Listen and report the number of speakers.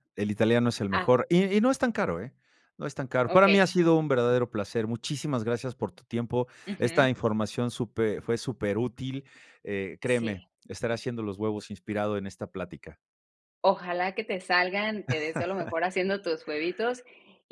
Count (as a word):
two